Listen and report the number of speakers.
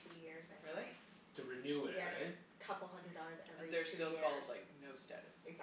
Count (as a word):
three